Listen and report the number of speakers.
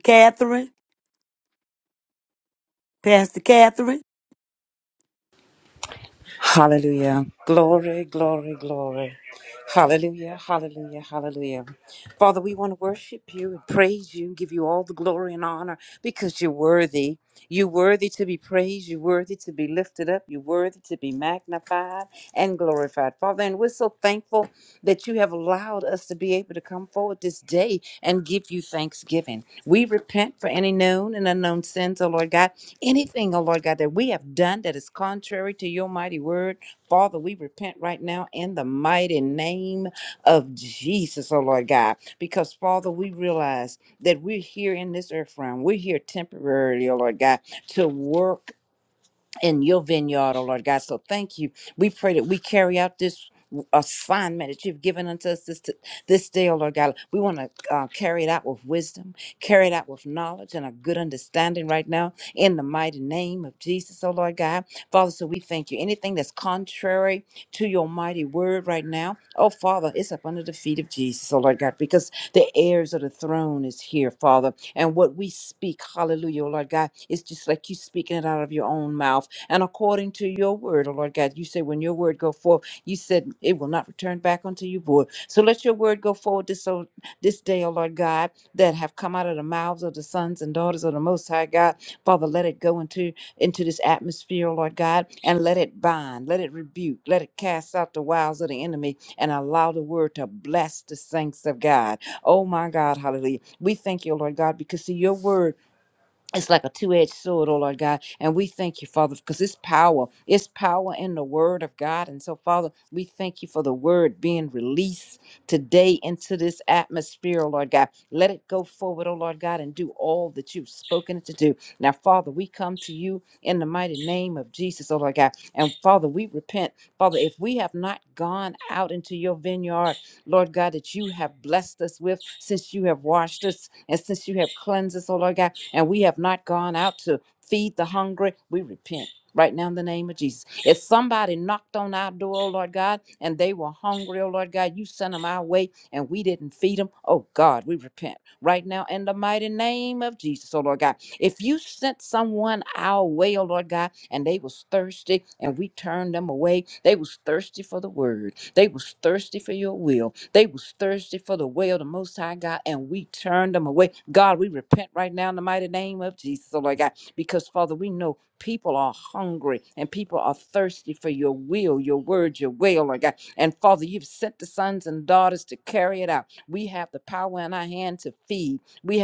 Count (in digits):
2